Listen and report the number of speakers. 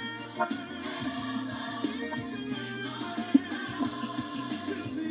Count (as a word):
zero